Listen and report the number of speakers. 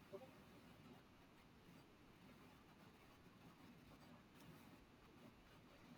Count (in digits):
0